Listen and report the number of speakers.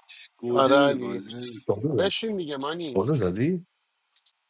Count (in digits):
3